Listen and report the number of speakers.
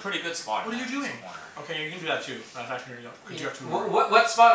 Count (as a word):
three